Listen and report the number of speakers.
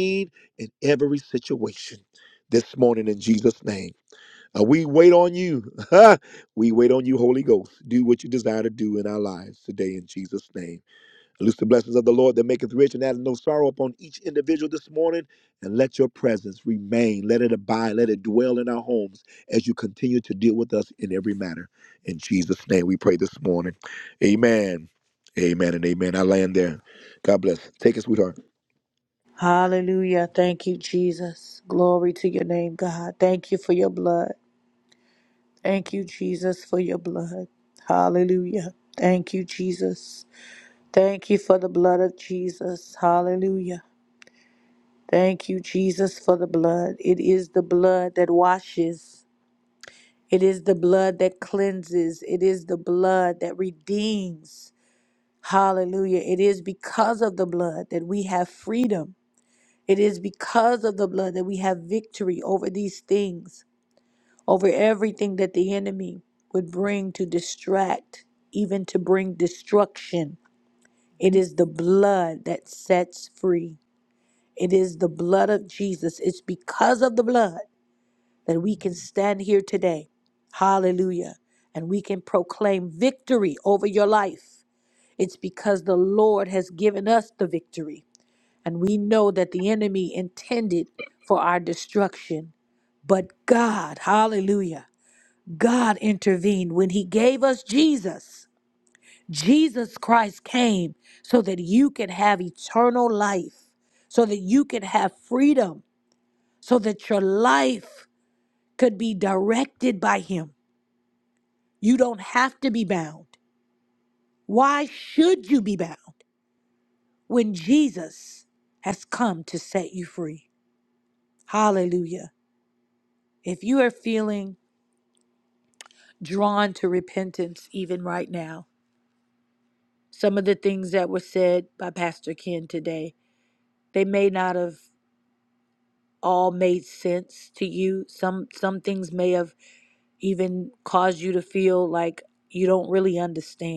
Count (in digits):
2